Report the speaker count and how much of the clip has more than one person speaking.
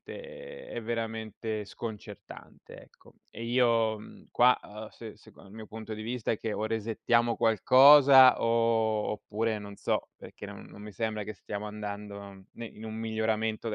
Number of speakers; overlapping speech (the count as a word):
one, no overlap